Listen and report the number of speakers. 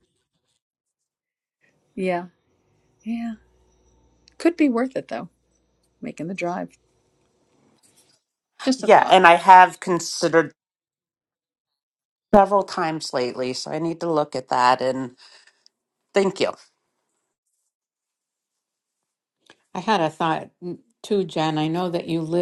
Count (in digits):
3